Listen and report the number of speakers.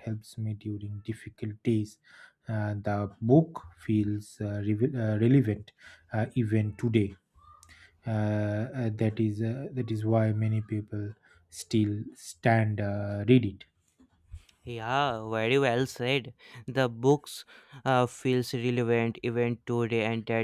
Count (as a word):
two